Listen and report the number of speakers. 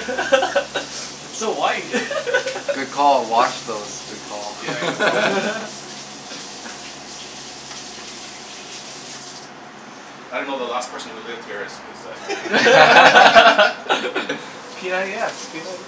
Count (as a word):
three